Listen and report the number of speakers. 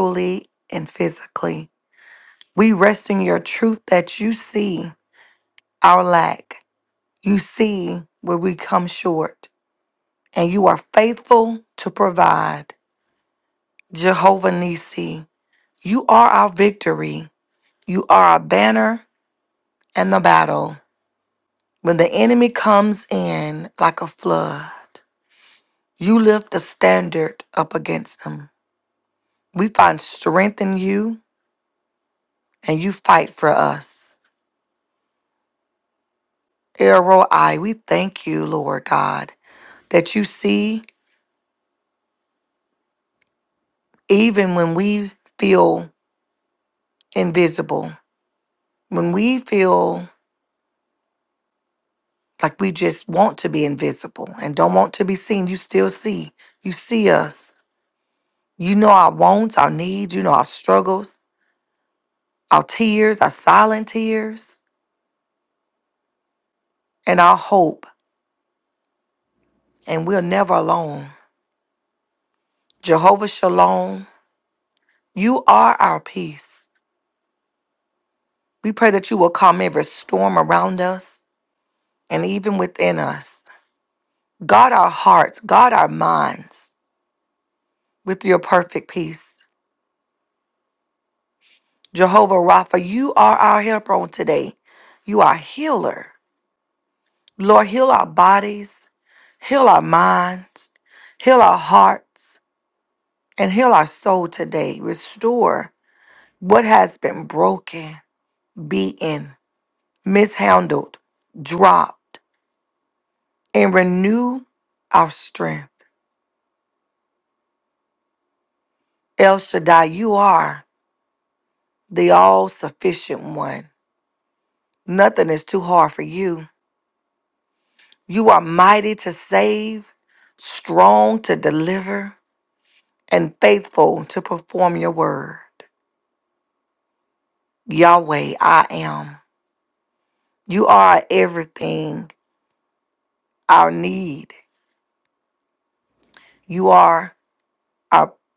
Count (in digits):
1